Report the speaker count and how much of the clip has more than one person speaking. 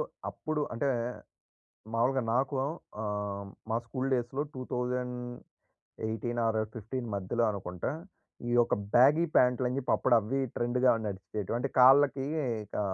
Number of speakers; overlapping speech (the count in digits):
1, no overlap